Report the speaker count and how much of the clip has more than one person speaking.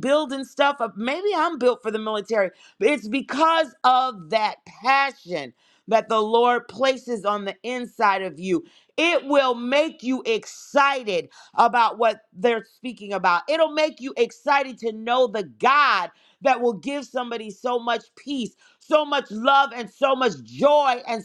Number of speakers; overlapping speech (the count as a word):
one, no overlap